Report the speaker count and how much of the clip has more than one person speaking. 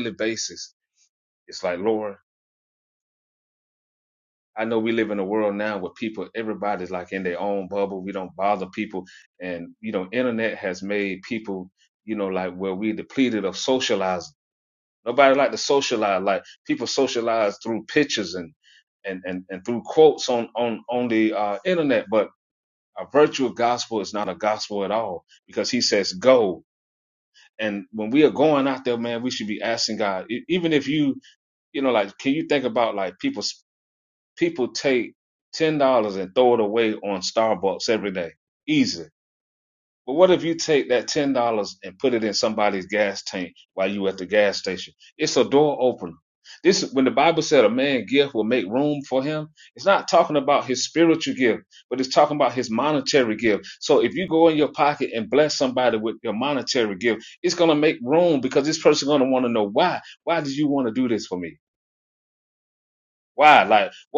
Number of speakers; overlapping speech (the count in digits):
1, no overlap